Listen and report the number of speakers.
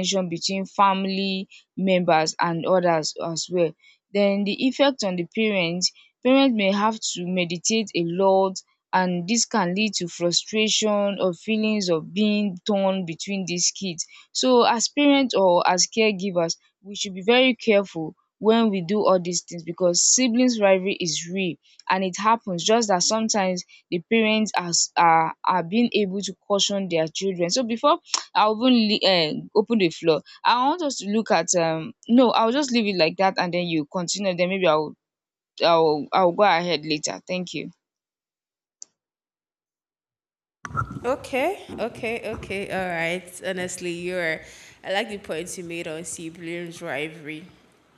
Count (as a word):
two